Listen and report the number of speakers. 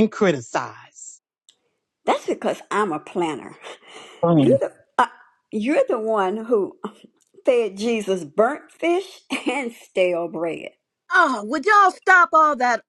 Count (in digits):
3